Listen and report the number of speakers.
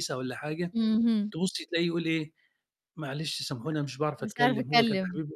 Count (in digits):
2